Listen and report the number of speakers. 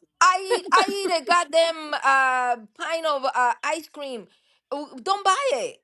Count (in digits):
1